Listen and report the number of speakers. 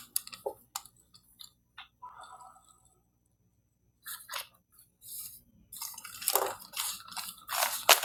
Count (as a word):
zero